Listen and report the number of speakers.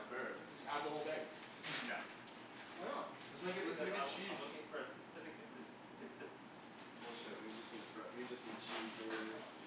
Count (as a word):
three